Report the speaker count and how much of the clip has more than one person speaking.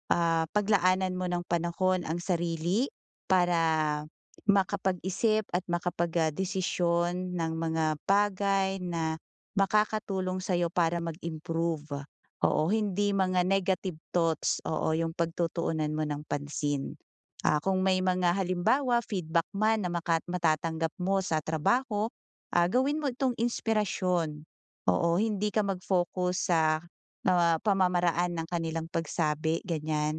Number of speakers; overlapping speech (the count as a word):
one, no overlap